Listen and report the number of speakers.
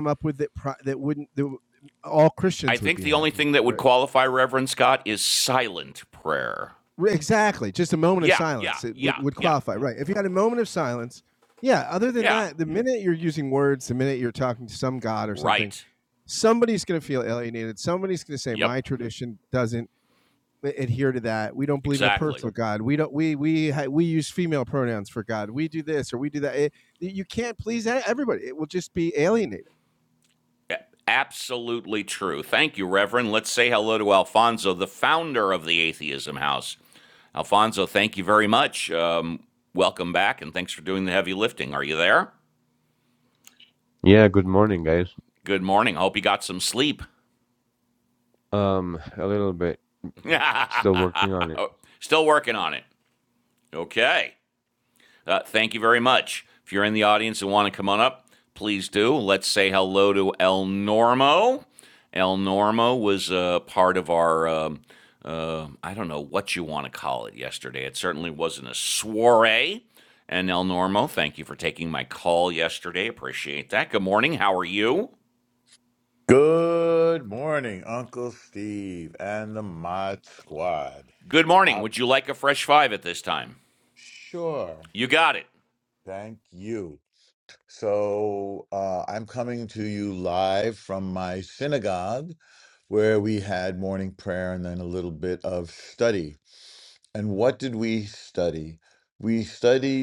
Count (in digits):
4